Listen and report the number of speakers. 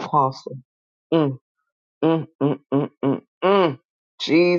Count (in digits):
1